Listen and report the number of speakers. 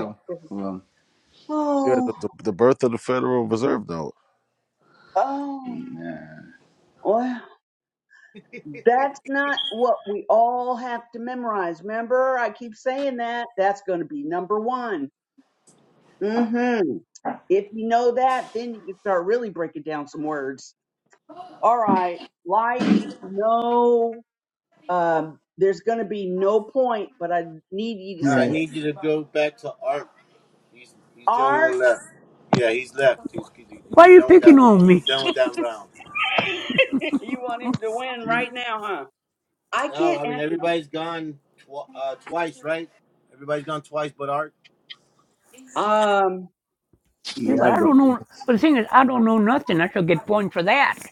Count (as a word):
five